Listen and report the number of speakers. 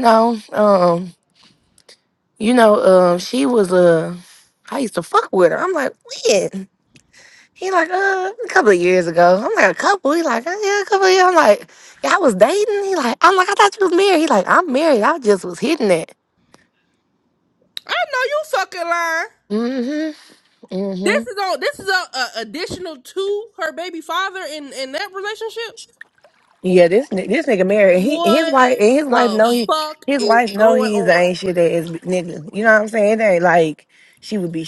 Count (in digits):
2